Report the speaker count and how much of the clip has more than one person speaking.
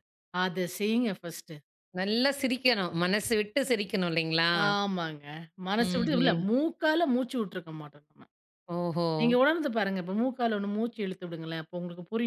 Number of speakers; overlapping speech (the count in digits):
2, about 5%